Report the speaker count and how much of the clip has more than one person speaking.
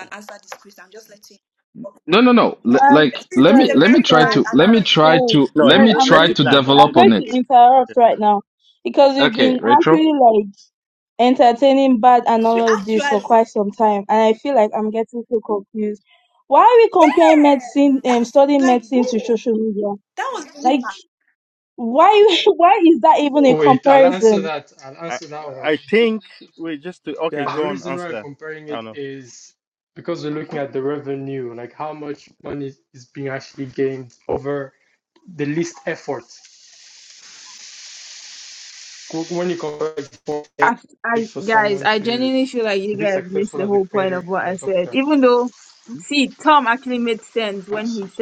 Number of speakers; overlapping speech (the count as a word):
six, about 29%